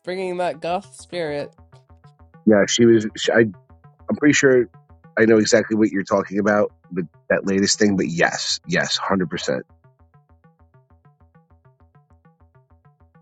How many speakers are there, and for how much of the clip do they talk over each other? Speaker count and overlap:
two, no overlap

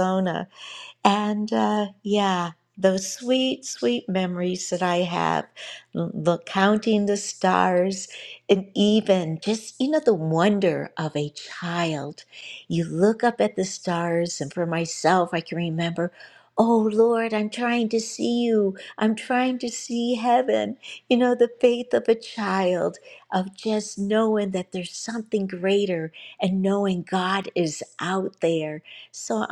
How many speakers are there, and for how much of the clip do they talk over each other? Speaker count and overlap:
one, no overlap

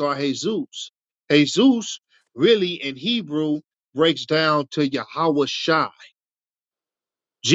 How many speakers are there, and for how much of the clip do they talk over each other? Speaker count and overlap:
one, no overlap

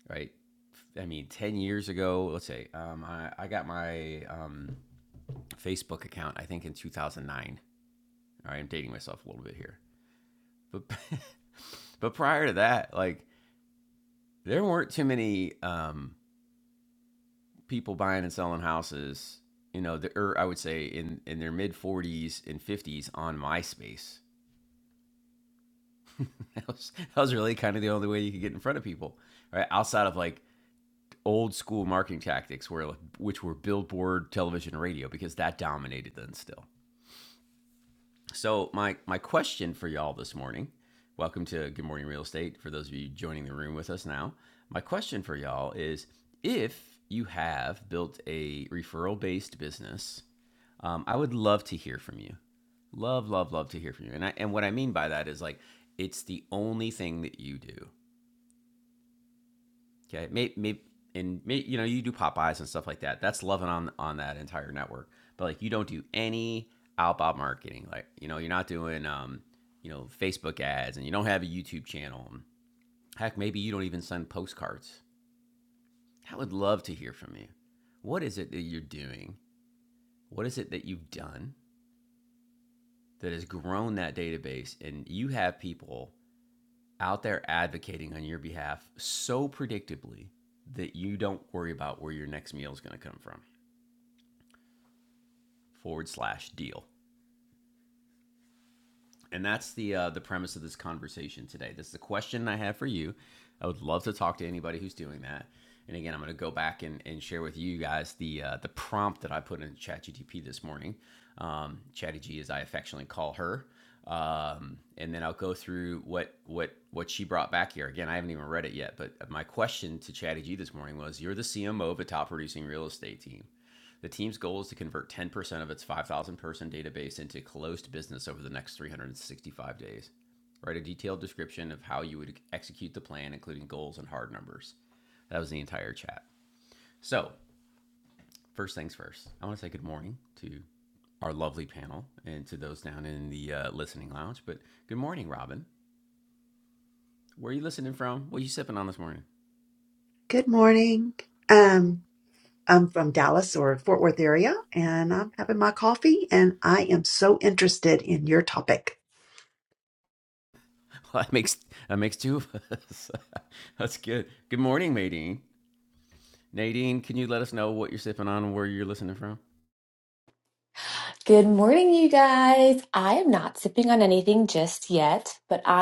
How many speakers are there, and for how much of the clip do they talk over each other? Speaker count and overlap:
three, no overlap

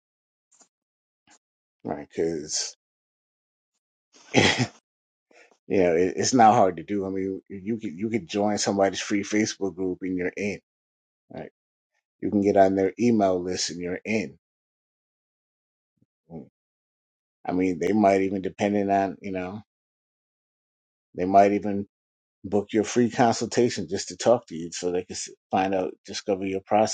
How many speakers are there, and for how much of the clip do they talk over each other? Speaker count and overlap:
one, no overlap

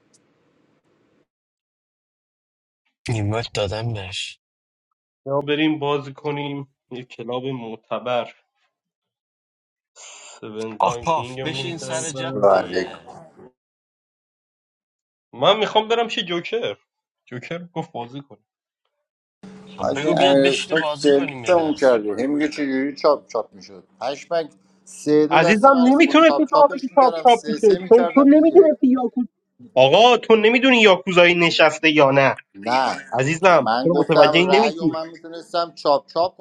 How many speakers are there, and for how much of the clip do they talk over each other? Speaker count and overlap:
three, about 26%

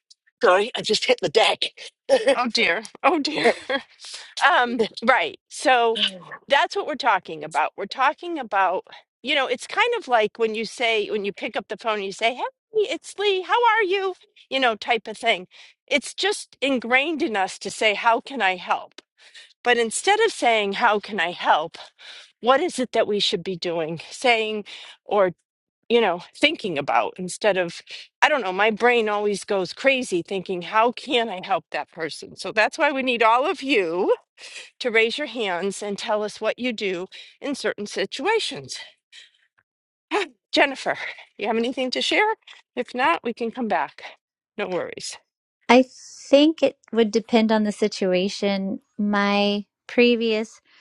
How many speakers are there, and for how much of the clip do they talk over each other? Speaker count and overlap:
three, no overlap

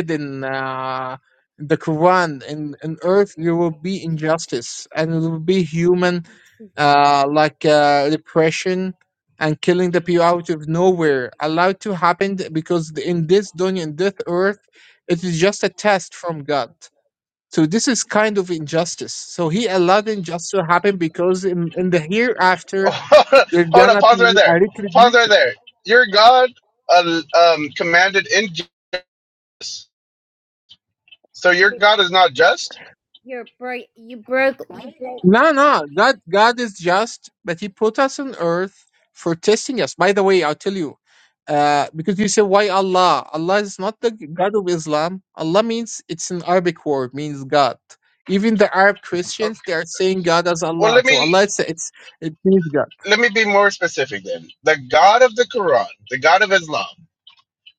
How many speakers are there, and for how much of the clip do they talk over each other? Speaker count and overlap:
three, about 3%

